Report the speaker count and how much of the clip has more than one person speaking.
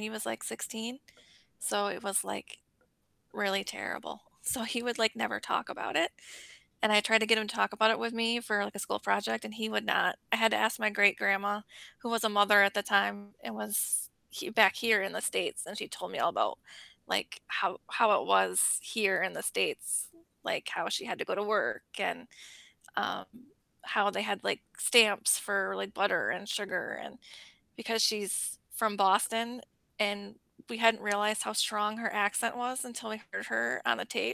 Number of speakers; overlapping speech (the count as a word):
one, no overlap